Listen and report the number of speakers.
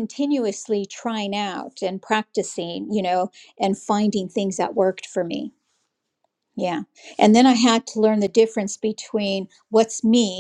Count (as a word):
one